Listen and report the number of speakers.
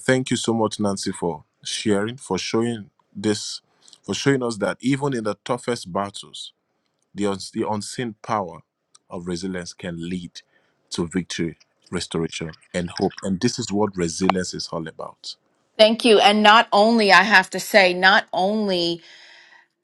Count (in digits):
2